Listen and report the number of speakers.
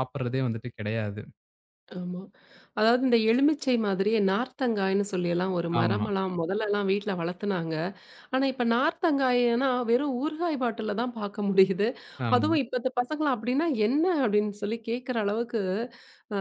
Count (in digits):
2